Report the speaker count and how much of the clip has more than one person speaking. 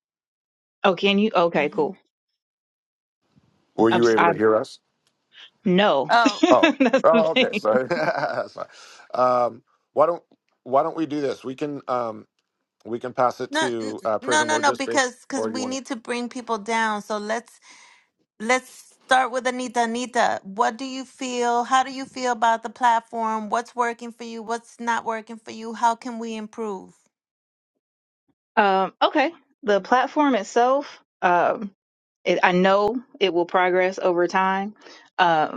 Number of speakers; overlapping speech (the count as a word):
three, about 10%